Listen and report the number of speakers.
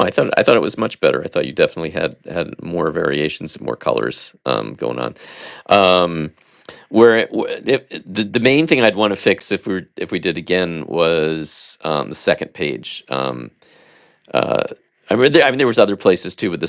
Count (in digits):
1